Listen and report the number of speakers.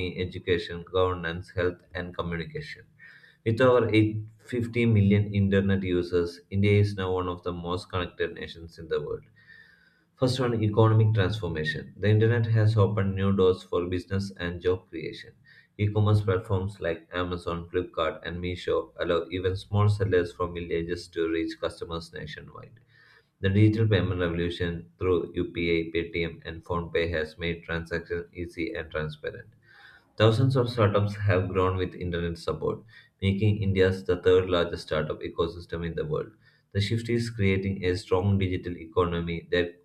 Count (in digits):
1